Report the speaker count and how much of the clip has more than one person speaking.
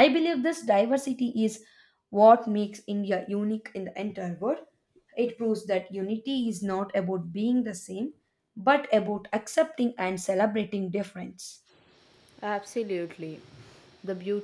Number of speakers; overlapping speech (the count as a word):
two, no overlap